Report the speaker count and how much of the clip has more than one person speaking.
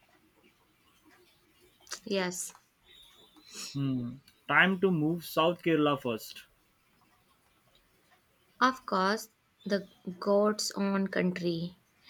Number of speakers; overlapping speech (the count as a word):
two, no overlap